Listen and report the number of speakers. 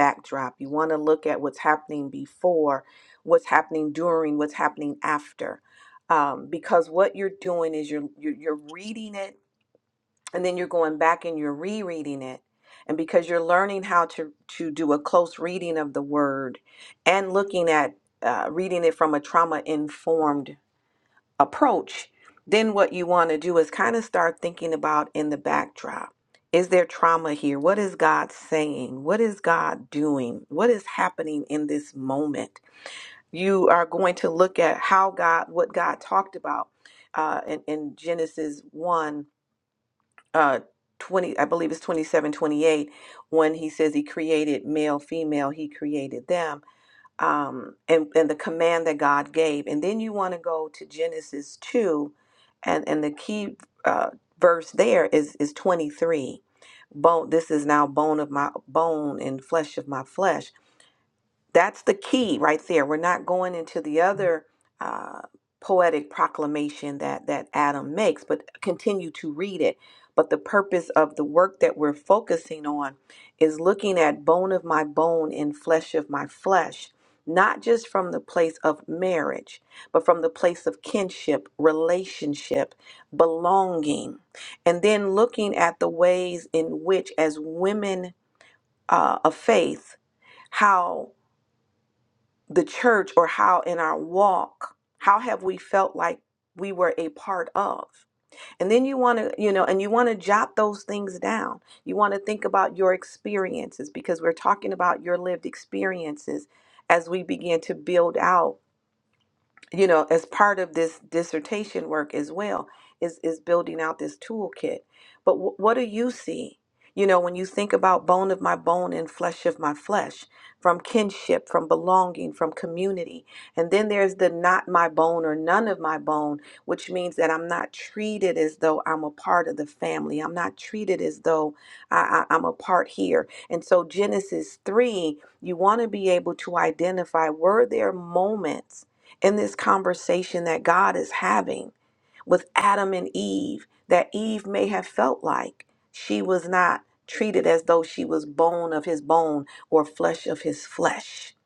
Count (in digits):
1